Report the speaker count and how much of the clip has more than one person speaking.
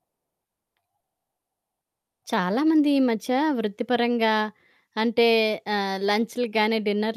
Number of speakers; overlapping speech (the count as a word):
one, no overlap